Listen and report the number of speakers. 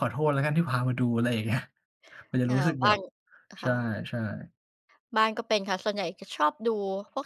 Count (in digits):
2